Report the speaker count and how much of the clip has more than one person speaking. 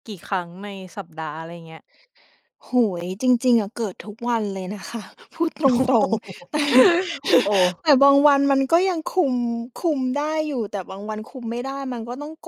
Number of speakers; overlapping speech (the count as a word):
two, about 8%